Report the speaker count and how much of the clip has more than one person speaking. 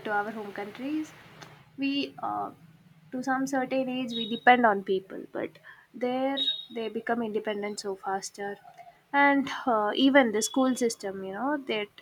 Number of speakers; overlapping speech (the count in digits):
1, no overlap